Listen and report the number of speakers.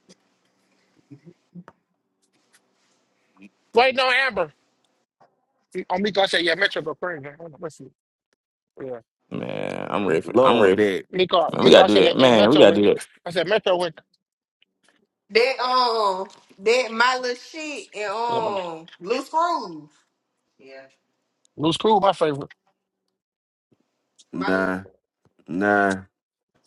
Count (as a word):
four